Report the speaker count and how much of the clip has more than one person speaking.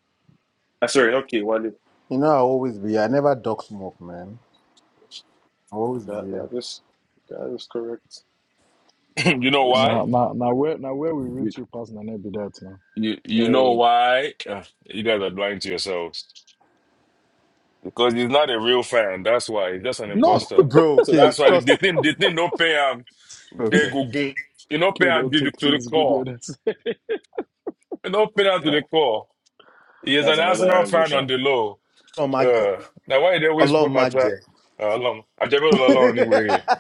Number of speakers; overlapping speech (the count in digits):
4, about 17%